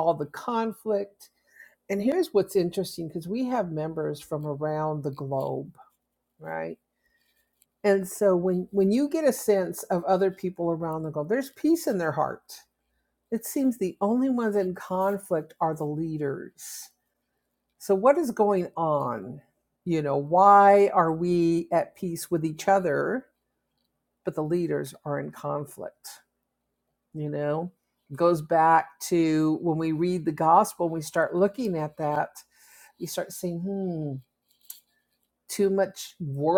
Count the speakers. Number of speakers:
1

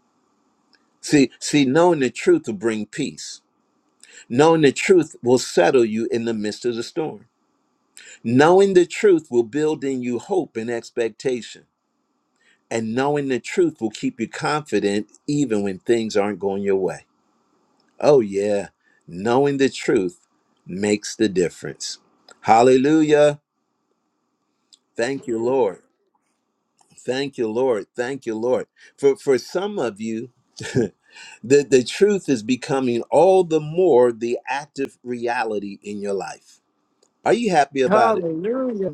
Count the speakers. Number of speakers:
2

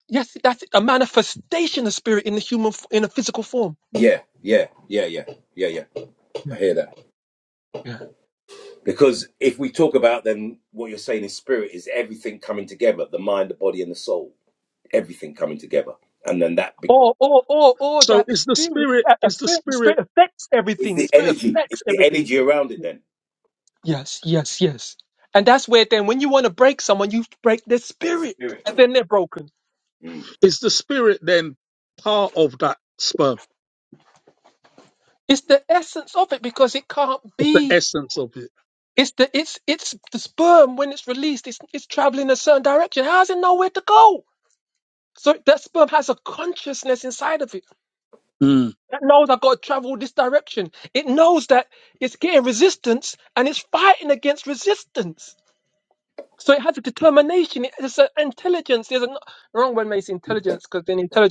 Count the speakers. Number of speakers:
3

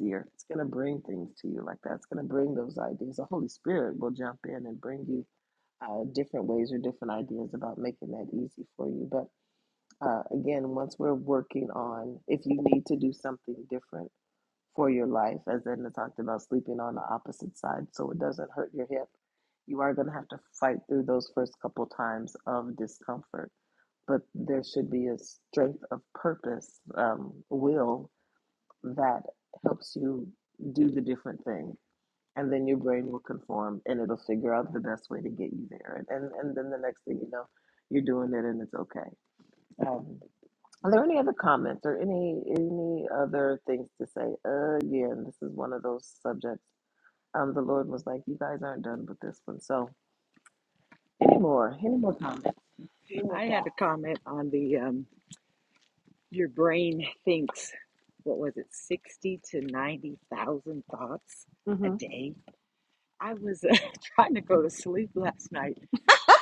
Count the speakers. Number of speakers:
2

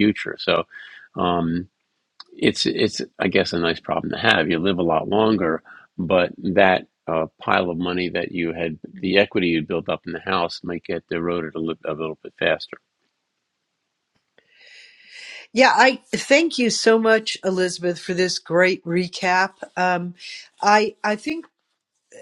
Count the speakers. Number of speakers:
2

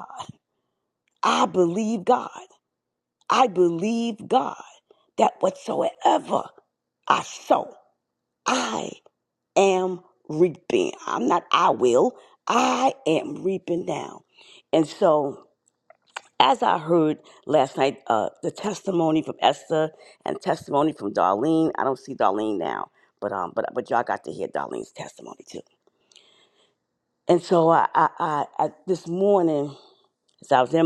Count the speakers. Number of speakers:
1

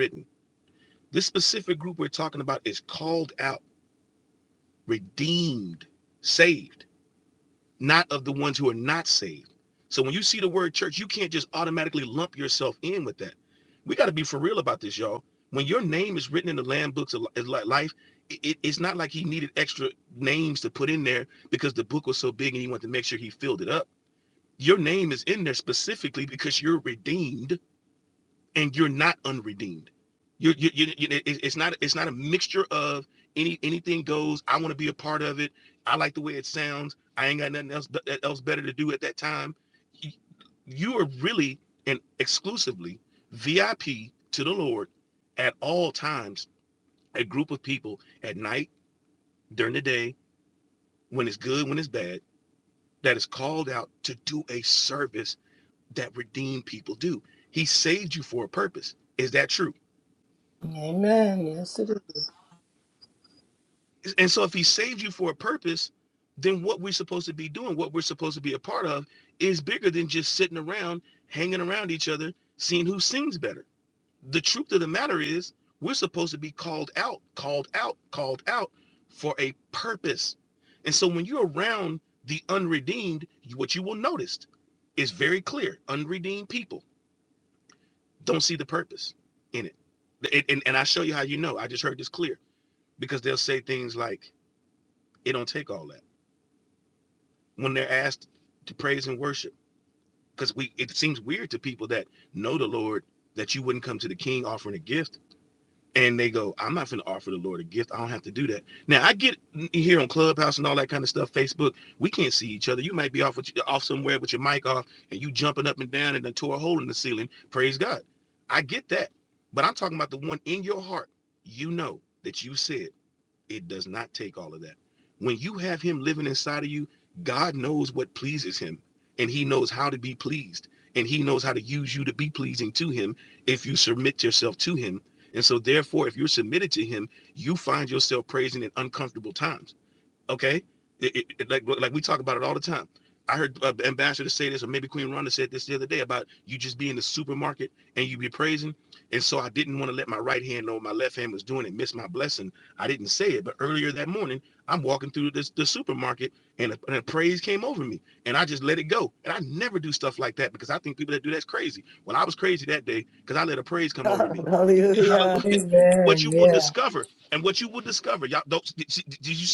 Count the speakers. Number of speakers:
3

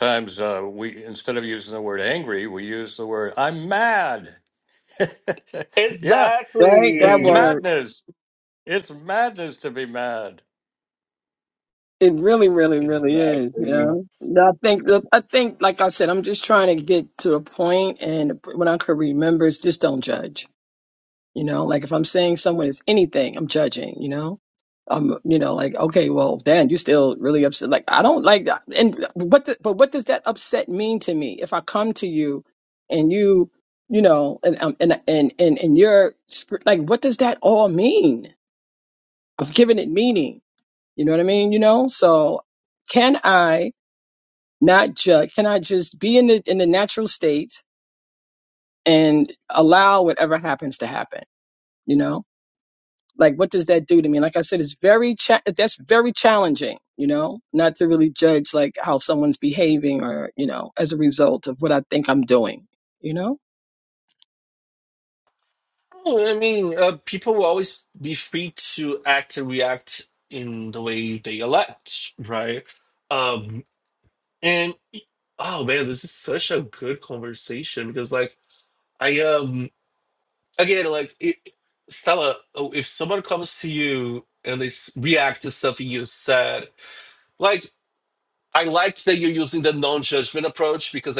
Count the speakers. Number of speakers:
3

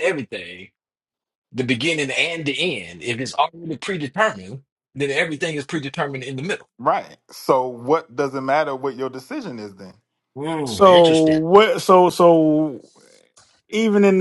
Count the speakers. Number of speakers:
3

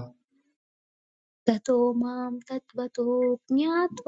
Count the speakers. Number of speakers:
1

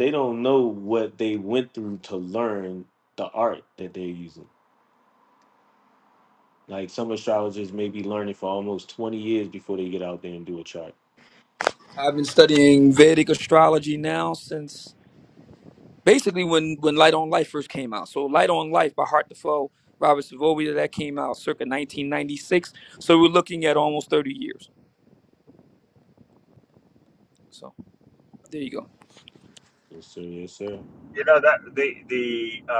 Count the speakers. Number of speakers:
3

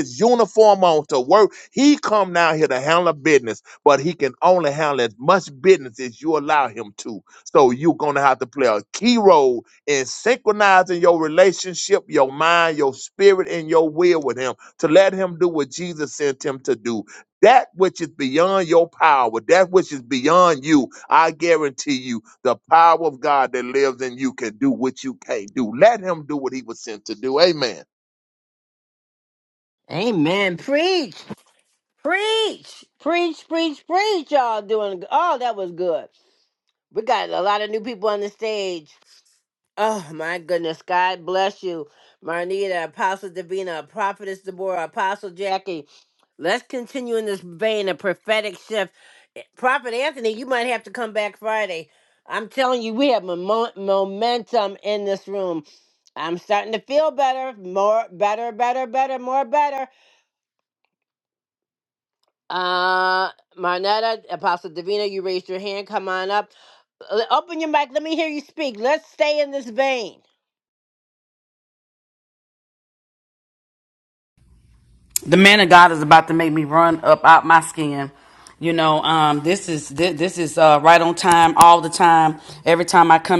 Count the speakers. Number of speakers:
3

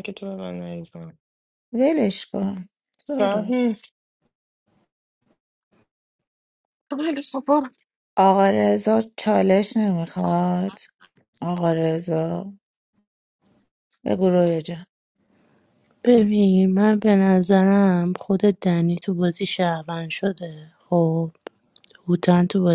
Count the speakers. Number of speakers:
3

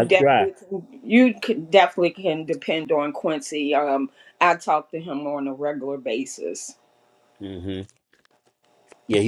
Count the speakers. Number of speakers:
2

